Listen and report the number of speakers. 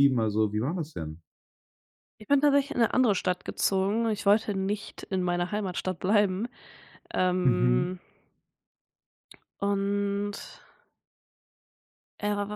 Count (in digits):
2